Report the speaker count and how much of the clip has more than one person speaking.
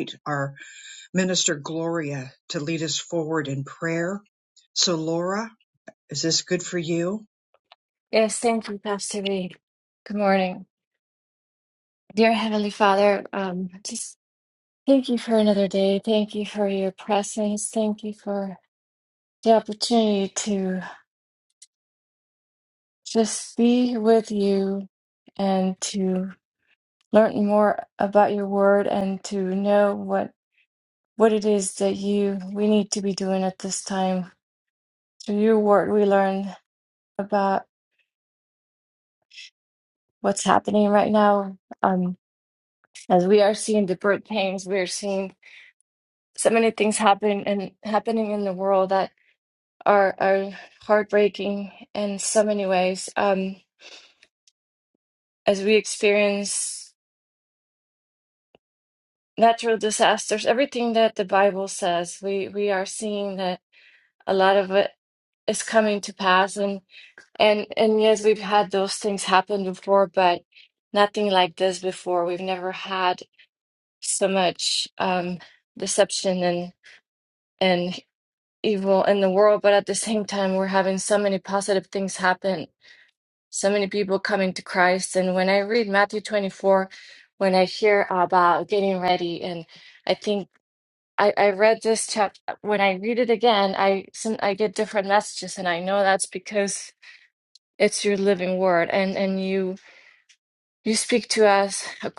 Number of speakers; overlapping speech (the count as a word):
two, no overlap